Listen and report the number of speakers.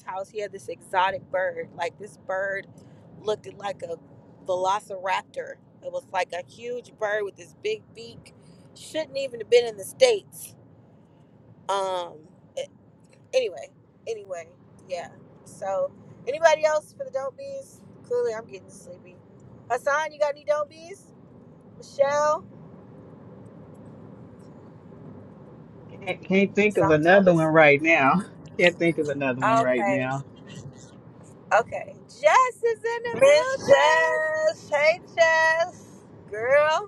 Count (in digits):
3